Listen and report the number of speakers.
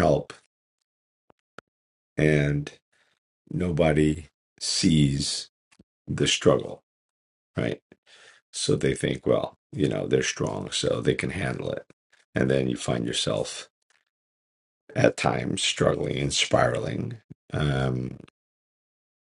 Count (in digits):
1